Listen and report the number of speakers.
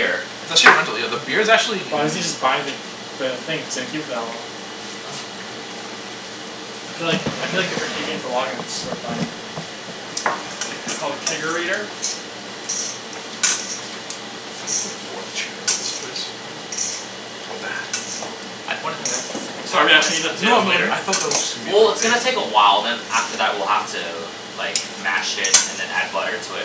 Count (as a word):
three